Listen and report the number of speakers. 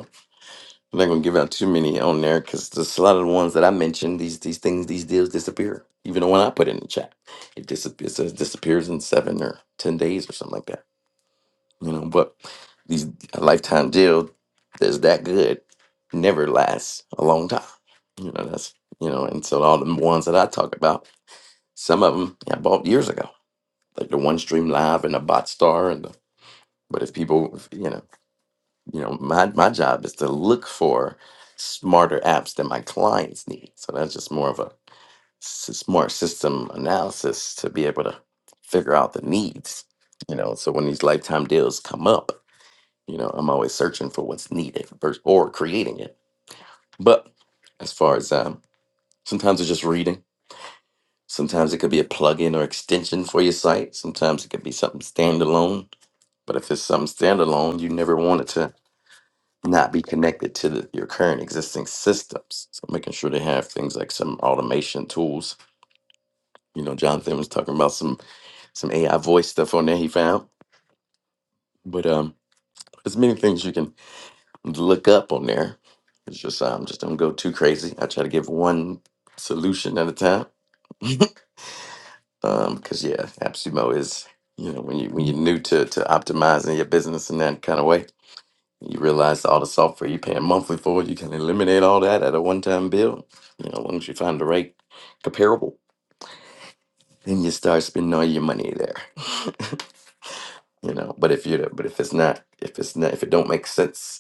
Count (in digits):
1